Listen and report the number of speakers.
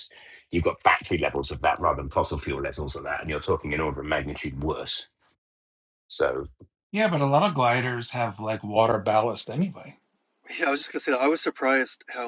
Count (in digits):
3